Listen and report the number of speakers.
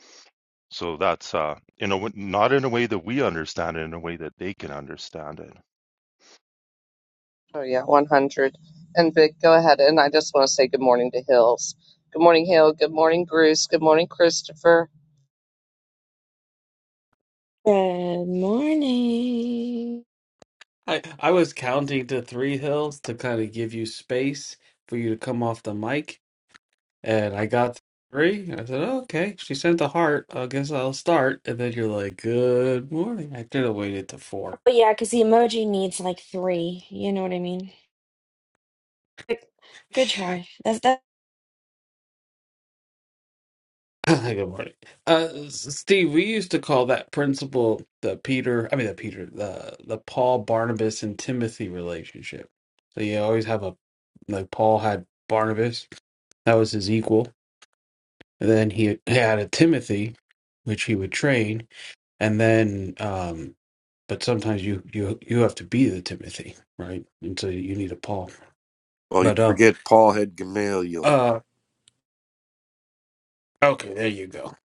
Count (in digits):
5